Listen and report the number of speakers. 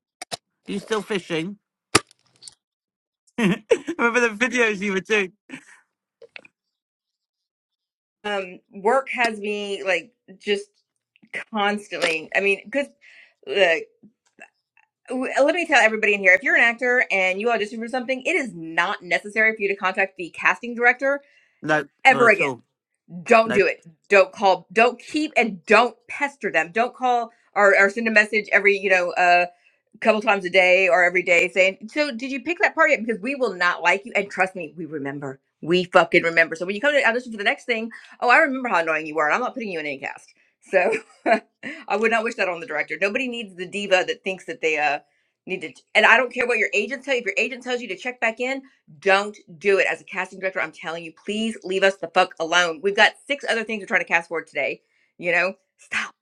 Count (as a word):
two